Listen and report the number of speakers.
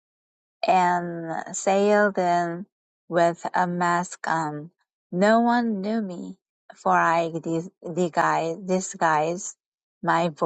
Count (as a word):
one